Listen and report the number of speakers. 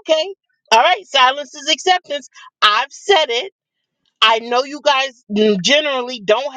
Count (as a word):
one